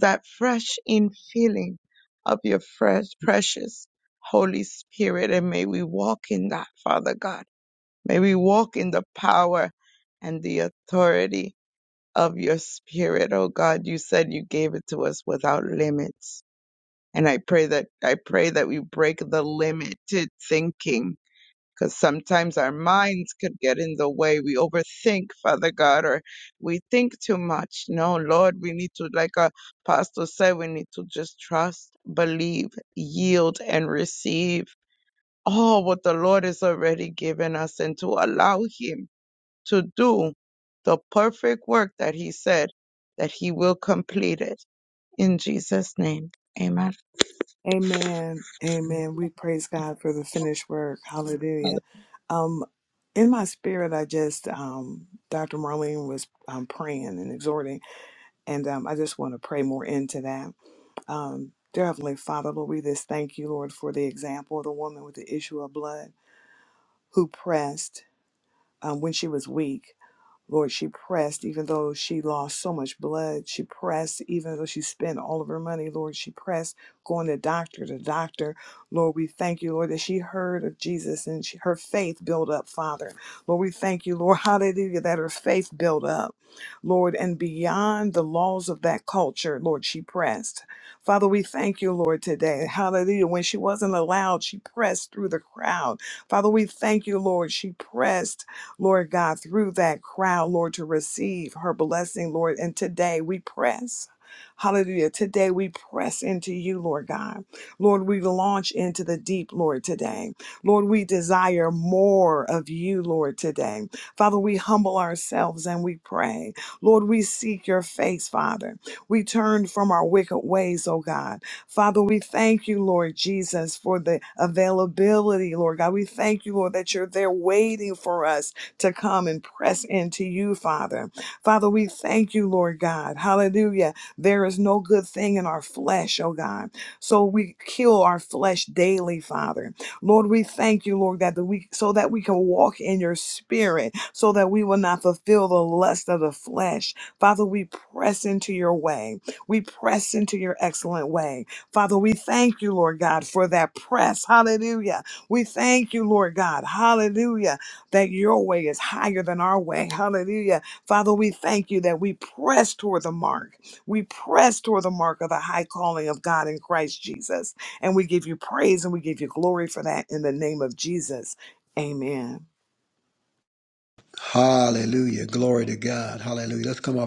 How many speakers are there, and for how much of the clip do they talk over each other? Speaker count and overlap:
three, no overlap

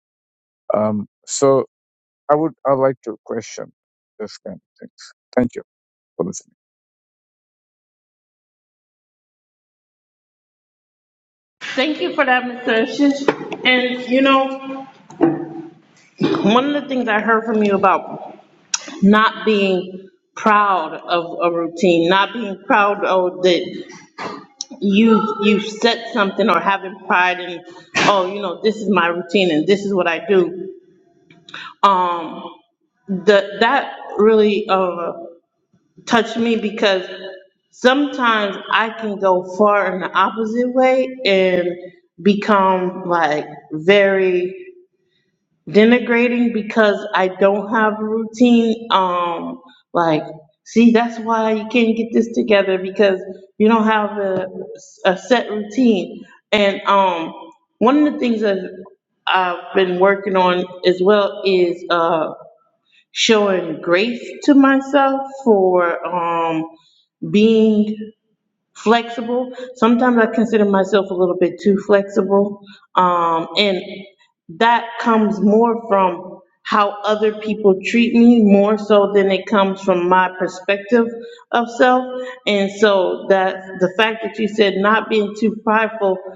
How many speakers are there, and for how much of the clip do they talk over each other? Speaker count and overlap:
two, no overlap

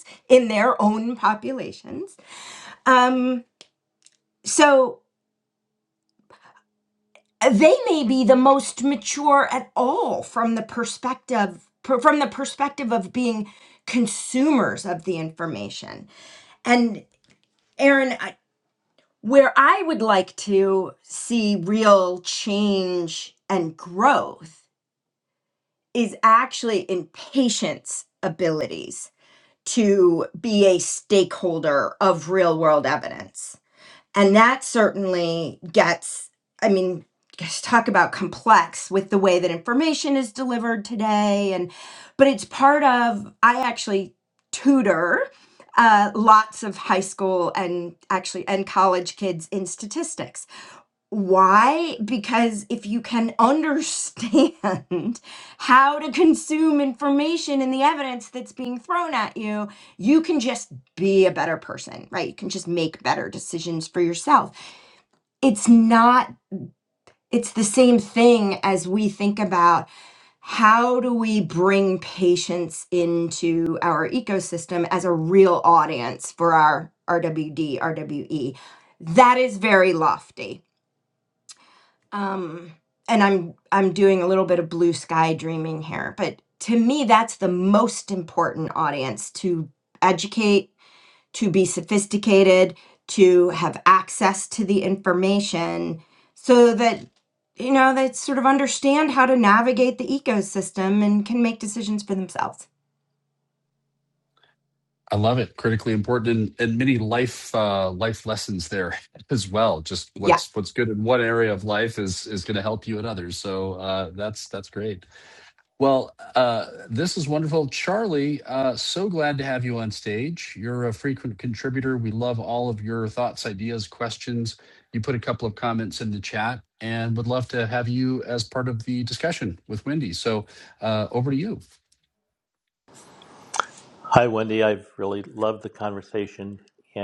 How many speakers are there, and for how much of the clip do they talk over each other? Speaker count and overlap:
three, under 1%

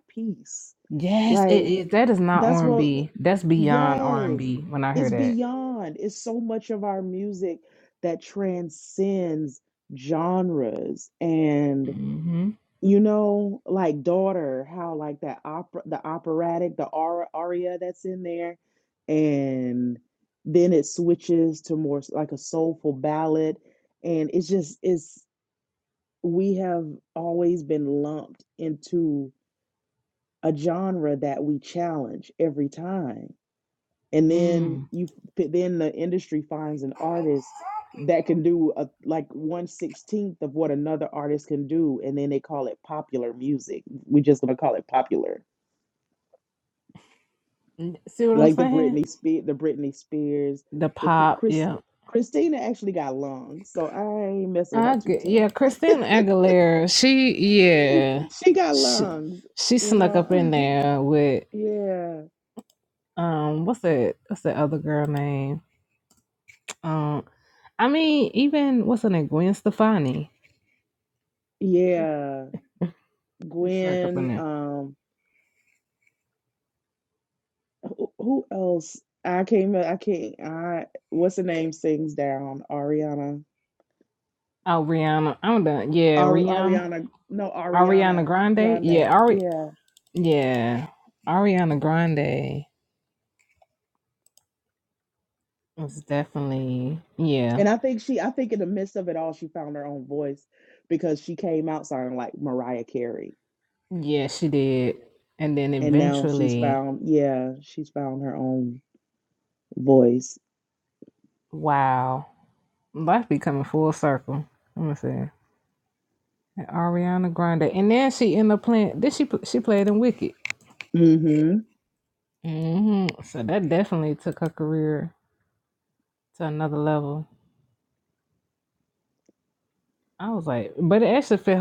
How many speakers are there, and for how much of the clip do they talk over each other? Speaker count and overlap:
two, about 8%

